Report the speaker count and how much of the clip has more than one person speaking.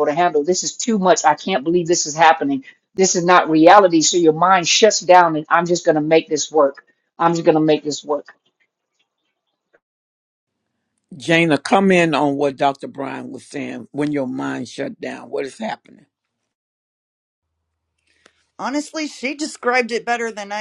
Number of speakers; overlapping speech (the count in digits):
3, no overlap